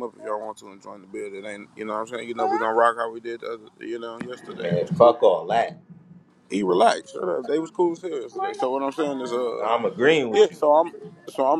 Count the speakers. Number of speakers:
2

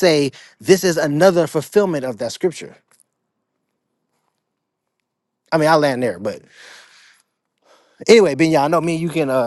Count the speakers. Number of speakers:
1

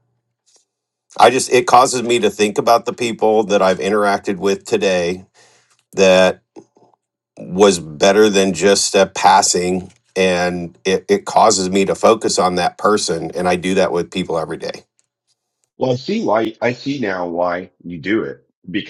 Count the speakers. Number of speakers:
2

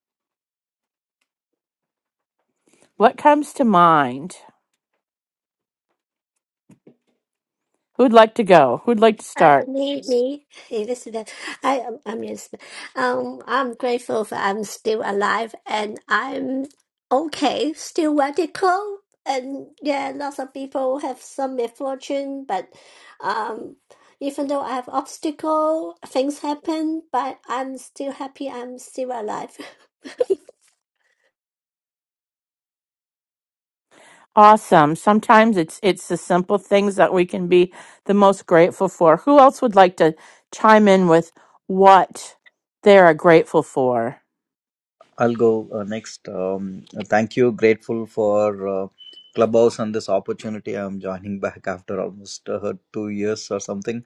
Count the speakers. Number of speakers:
3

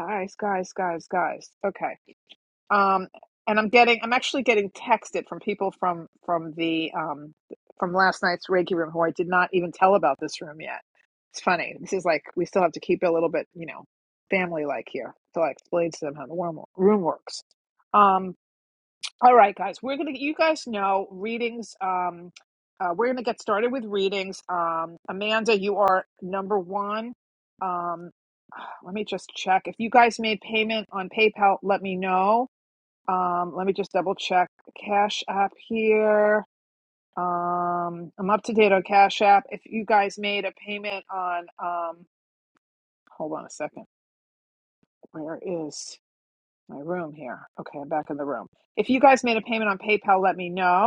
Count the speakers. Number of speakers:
1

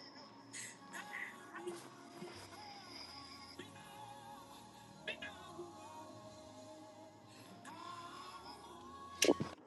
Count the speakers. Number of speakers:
0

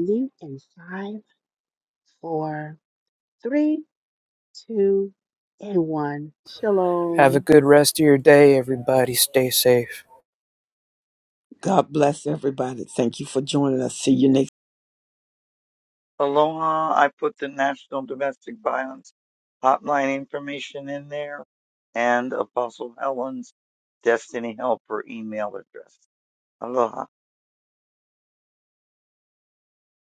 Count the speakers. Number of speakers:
4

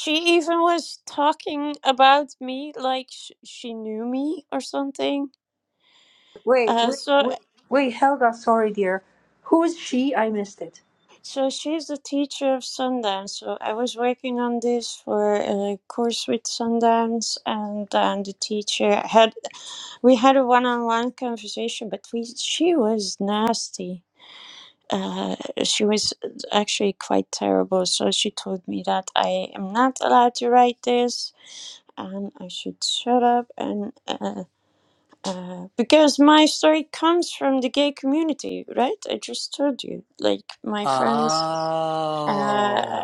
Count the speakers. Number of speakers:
3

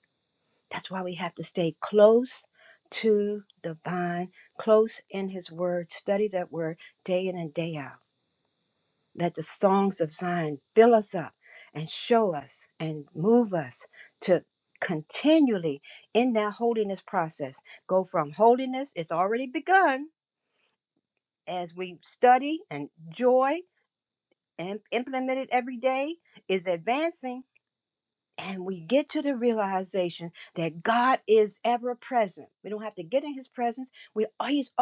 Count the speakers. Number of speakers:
1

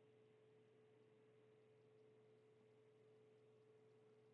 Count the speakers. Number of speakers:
0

